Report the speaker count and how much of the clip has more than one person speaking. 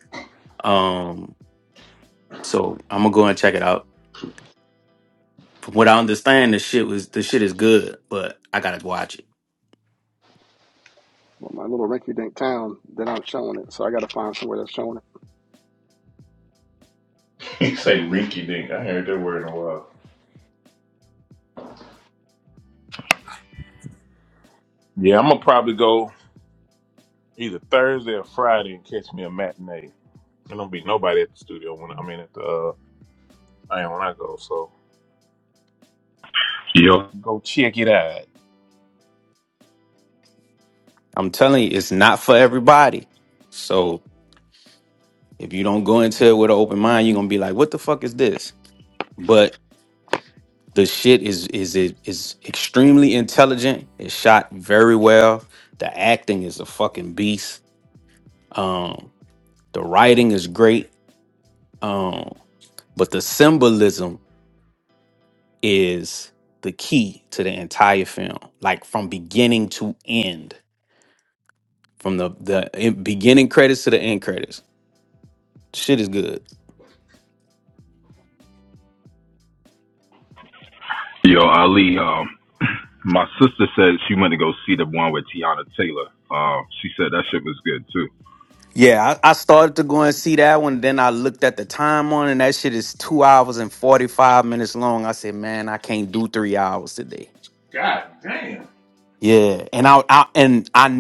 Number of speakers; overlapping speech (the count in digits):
4, no overlap